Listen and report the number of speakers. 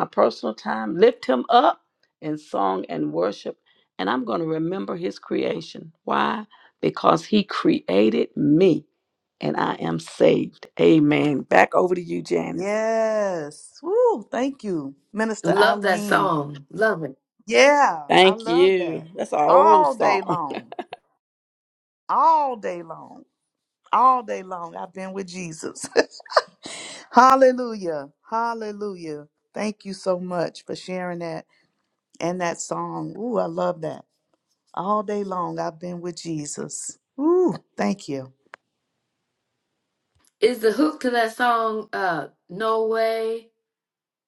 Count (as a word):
three